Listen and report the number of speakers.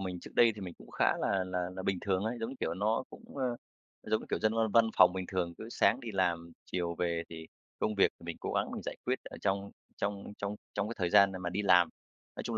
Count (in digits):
1